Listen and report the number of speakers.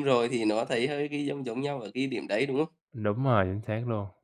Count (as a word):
two